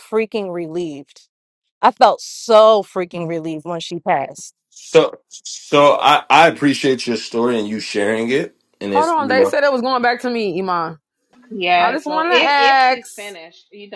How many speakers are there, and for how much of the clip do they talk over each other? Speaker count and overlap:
4, about 13%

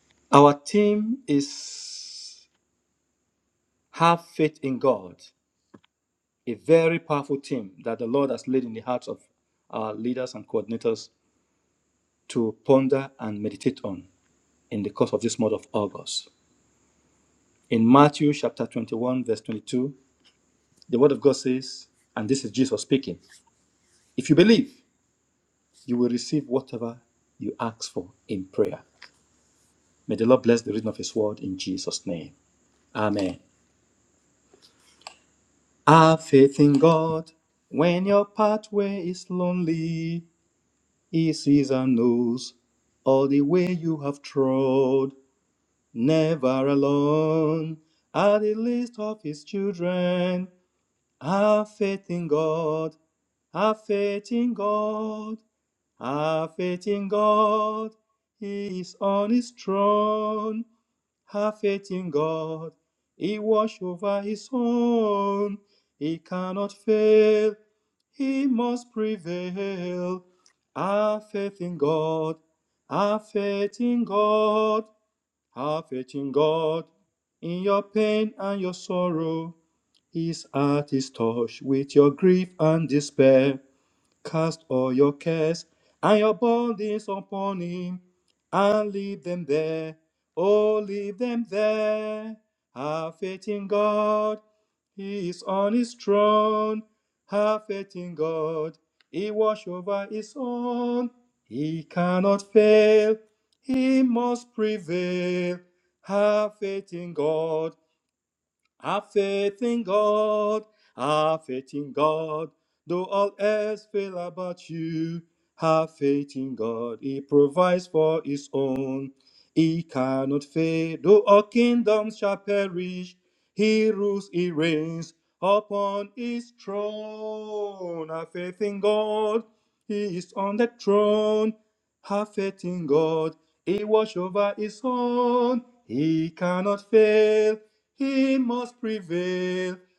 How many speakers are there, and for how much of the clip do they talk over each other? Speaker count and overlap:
1, no overlap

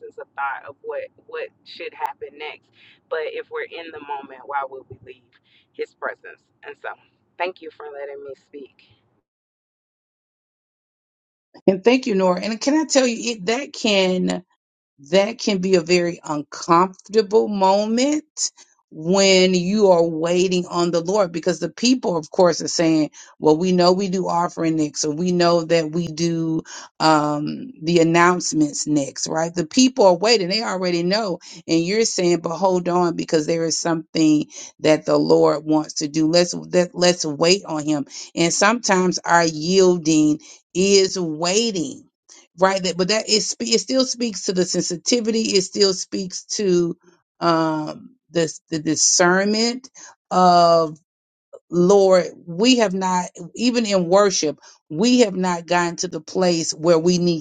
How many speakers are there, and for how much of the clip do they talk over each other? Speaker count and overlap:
2, no overlap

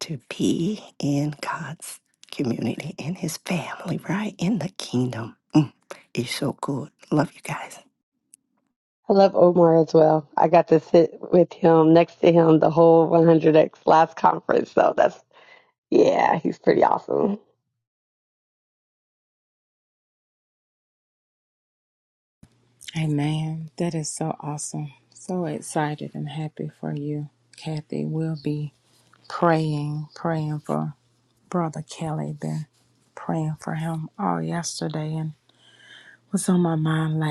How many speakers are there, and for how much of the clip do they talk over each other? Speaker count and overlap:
3, no overlap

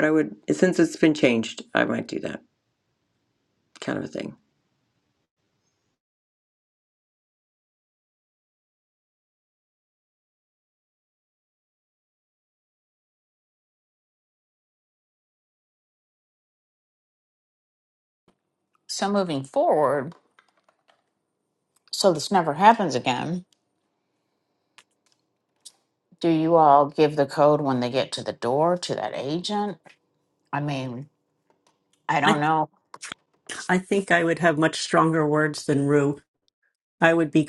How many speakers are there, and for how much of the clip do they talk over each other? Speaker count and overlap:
3, under 1%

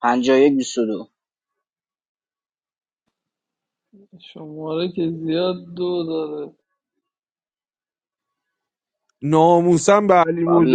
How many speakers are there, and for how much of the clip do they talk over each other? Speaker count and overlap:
3, about 3%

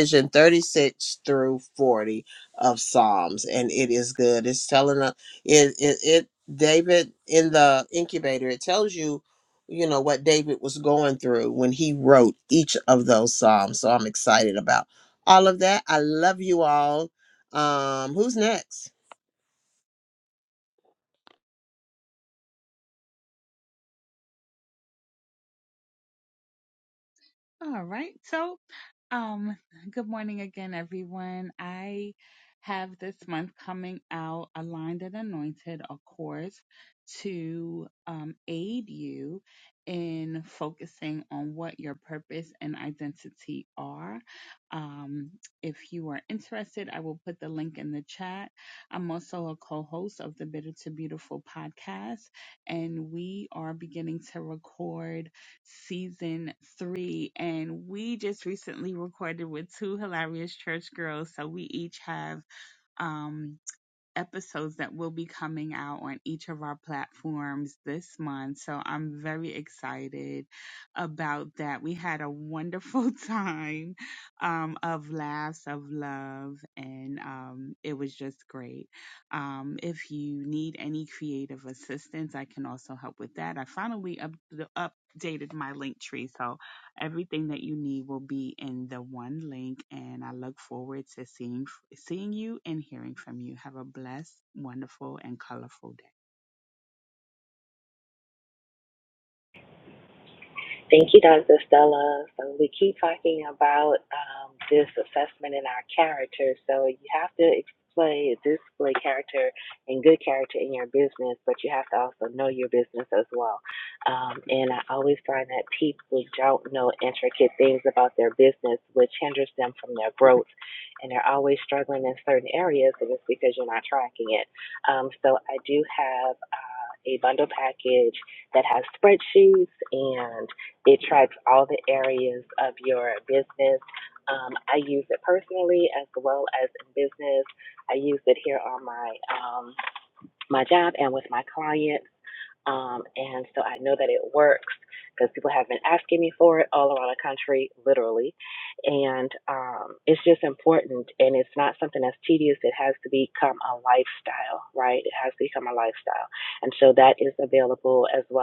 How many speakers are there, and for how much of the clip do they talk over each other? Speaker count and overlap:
3, no overlap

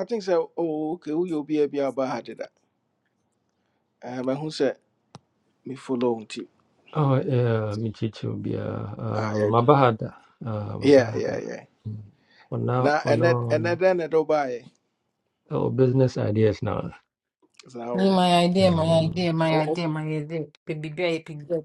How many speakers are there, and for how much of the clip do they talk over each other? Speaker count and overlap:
3, about 14%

